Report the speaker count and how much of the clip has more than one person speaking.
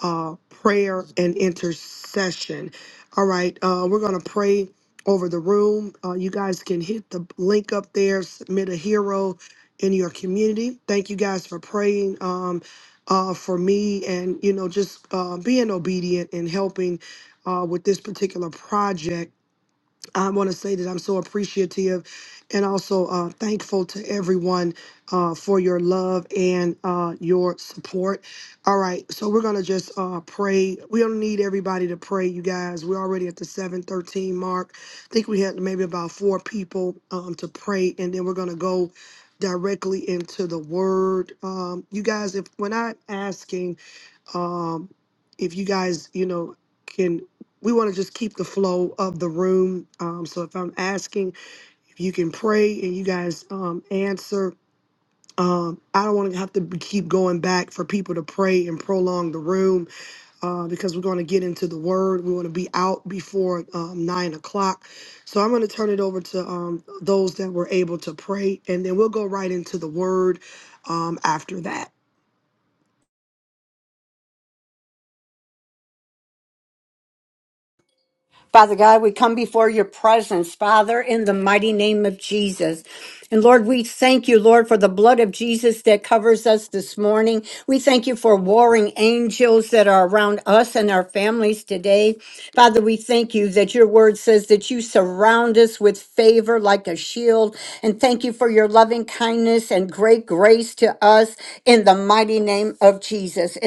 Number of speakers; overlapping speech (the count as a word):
two, no overlap